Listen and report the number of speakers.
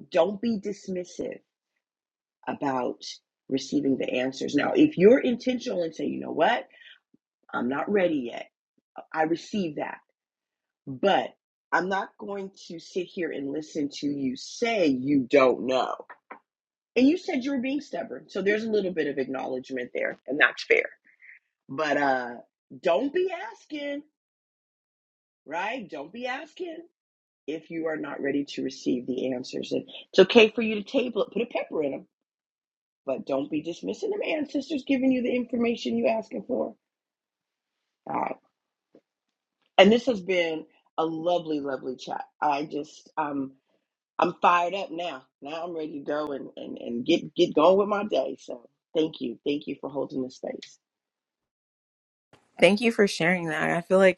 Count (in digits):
2